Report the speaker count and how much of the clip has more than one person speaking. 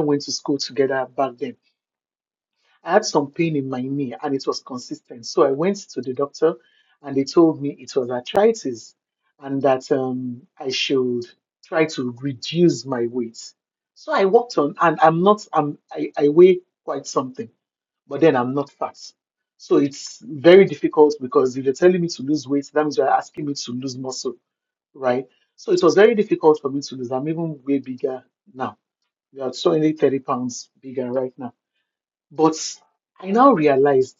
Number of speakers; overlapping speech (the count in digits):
1, no overlap